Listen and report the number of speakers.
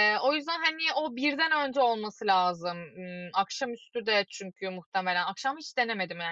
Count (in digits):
1